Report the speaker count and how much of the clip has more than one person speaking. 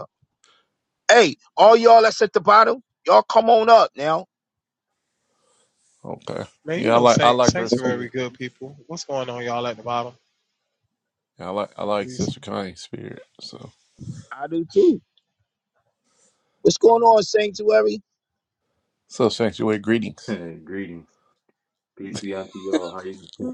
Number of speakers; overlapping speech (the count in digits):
4, about 7%